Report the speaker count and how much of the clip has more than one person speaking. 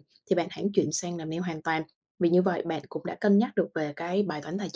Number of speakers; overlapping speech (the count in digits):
1, no overlap